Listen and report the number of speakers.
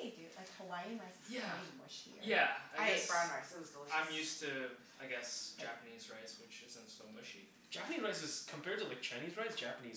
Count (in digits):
4